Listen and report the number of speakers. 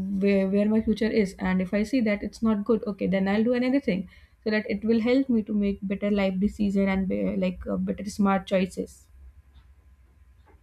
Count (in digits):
1